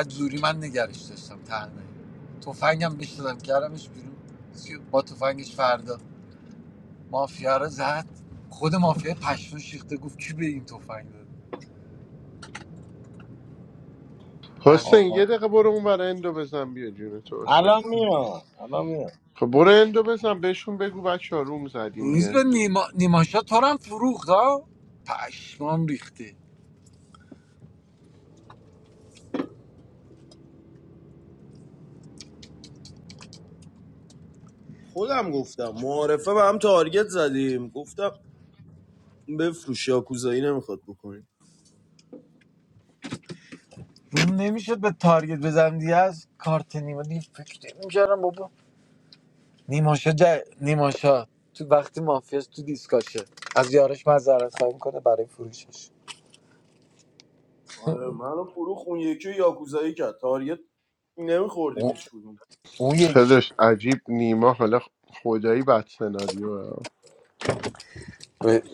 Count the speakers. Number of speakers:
four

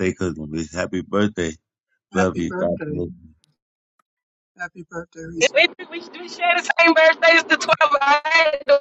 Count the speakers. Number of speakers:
three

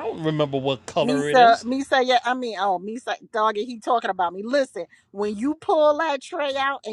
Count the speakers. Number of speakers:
two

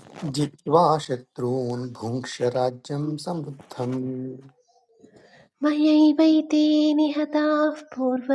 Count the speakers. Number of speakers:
two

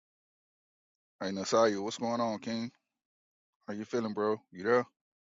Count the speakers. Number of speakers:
one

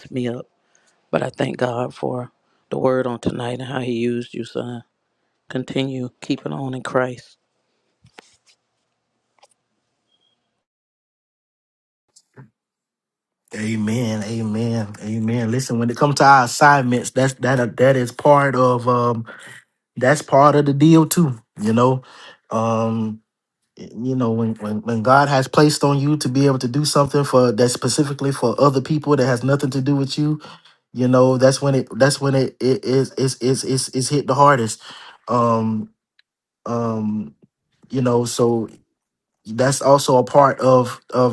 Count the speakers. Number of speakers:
two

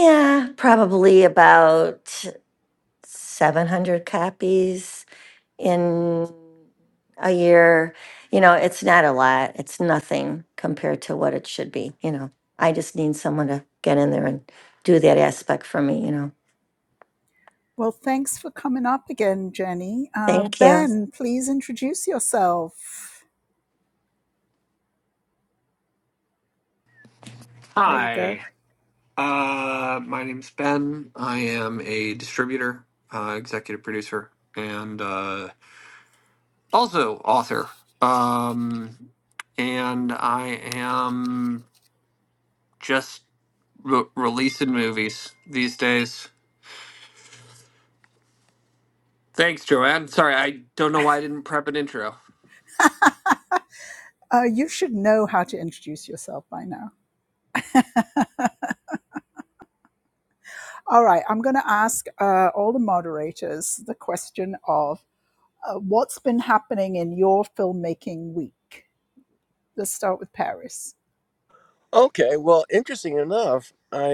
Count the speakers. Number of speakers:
four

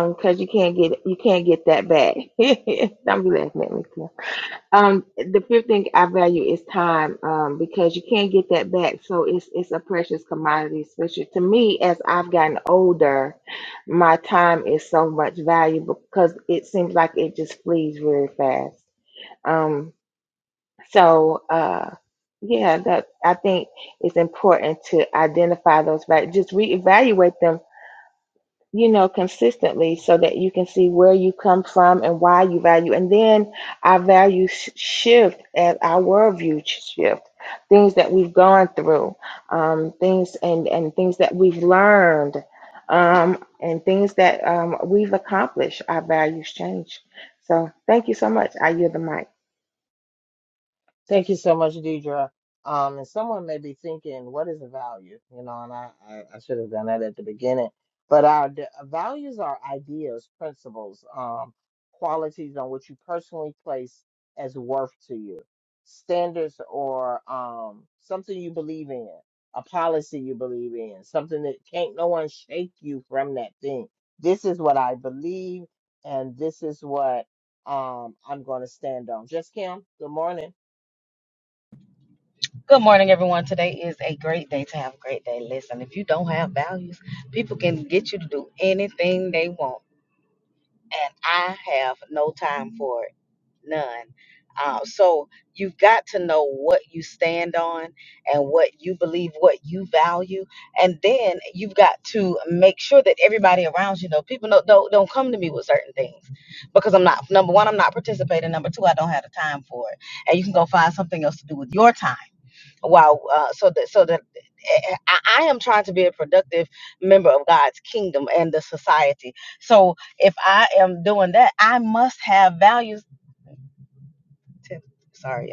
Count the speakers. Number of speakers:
three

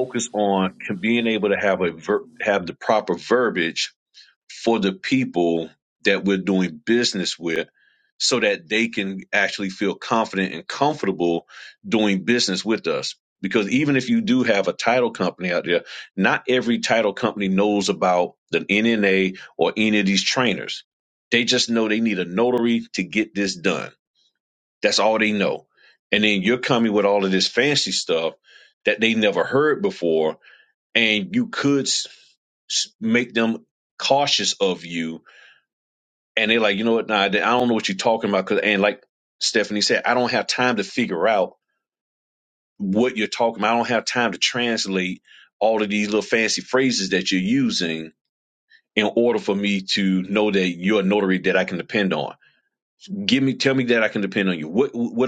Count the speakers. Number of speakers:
one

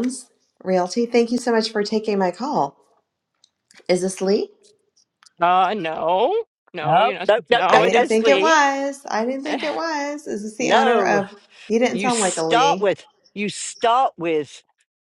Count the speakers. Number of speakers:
three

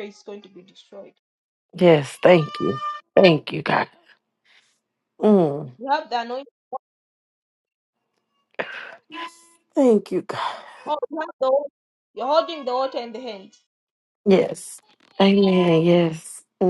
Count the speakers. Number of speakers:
two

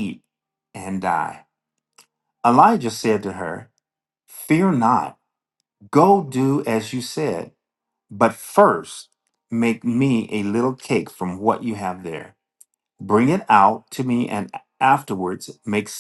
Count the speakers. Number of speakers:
one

